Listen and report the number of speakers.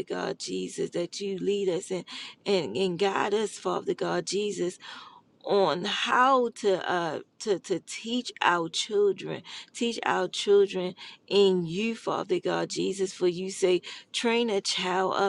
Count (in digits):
1